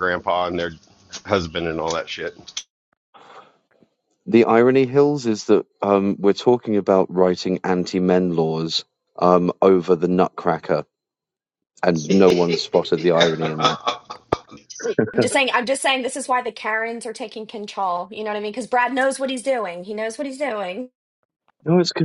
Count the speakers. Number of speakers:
3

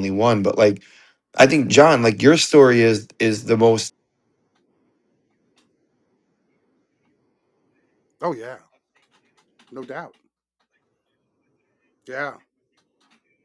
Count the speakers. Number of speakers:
2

